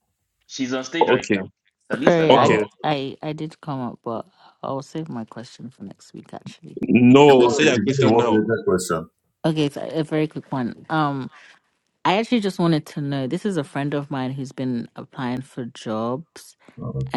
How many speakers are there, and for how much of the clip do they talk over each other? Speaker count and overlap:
four, about 13%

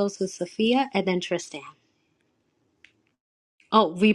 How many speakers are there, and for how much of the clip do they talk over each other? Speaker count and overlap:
one, no overlap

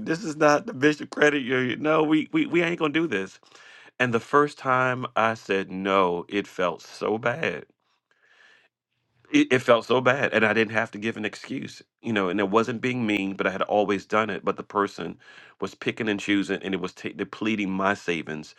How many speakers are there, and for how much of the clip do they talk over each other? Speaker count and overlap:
one, no overlap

